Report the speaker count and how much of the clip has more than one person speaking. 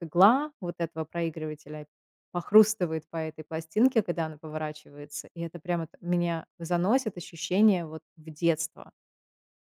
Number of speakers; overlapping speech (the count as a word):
one, no overlap